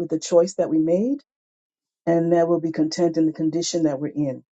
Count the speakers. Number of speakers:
1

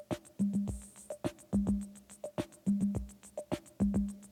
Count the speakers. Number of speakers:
0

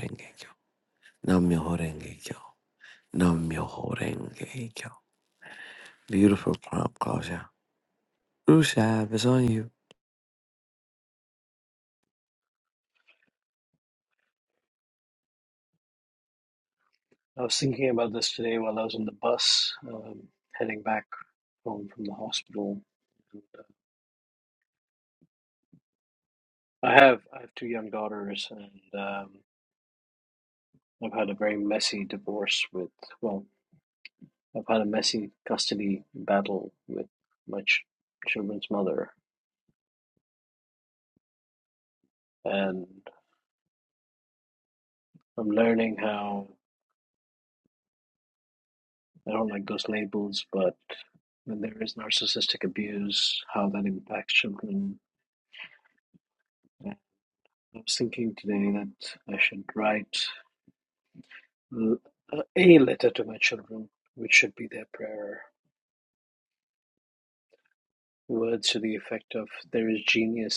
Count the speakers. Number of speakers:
2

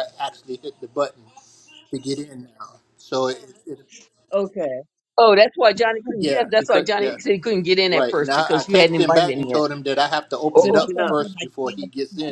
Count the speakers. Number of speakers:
3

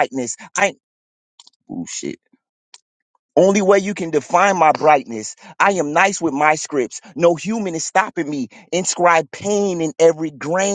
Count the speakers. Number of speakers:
1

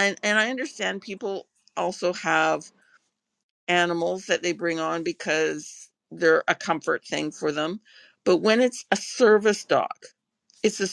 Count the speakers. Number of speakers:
1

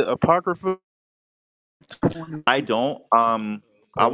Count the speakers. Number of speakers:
2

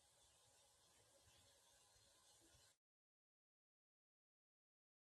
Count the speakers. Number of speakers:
0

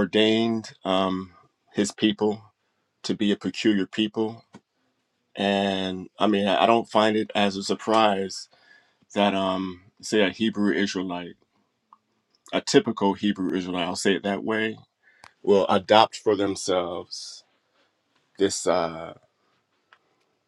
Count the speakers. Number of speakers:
1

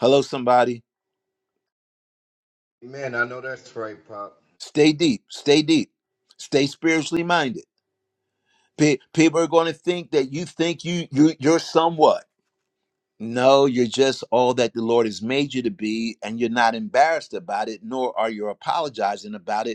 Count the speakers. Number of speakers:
2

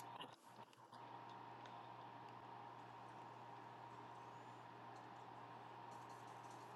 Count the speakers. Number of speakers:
0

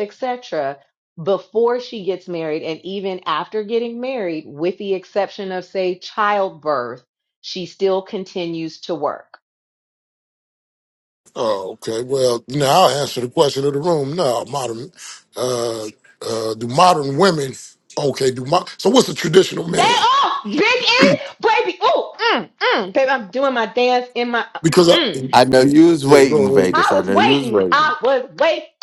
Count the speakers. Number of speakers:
3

